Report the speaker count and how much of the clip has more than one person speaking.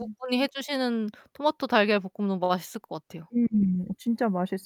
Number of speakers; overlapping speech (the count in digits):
2, no overlap